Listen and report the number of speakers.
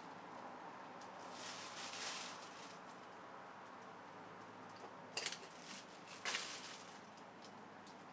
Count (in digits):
0